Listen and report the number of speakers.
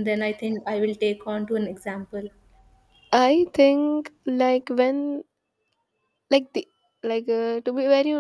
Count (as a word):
two